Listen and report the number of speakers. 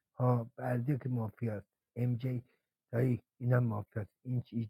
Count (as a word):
one